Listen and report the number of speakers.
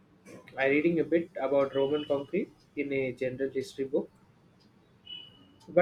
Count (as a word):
one